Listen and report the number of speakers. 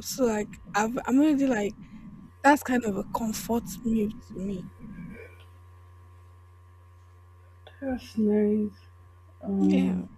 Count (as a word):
two